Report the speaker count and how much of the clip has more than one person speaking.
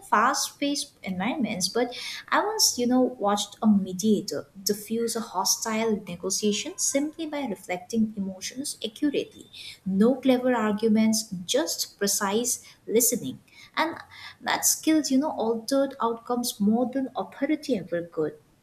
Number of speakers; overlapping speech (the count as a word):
one, no overlap